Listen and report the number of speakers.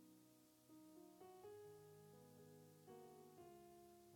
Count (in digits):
0